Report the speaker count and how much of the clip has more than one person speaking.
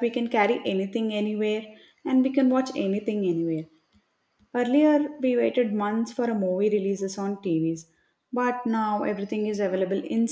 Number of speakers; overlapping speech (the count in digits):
1, no overlap